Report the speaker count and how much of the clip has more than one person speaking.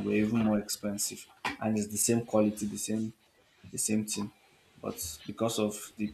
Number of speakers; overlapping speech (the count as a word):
one, no overlap